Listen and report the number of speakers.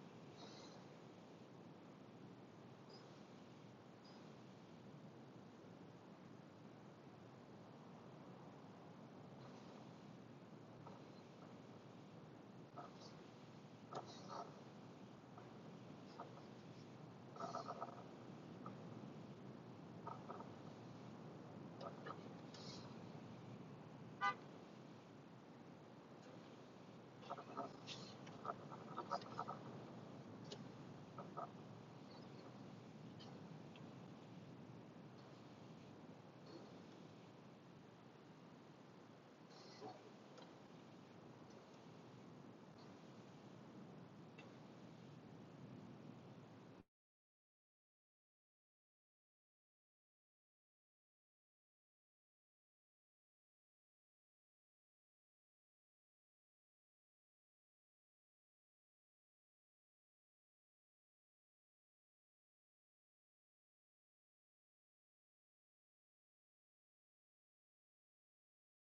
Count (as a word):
zero